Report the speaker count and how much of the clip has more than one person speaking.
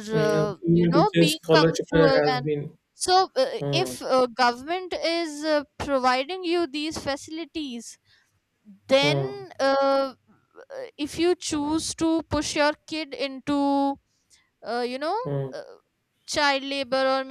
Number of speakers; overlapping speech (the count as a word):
two, about 15%